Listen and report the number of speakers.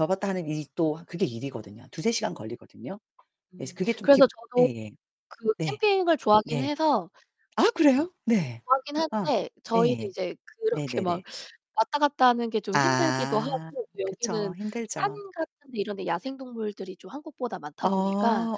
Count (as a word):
two